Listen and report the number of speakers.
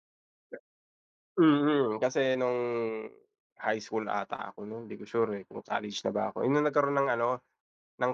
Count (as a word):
one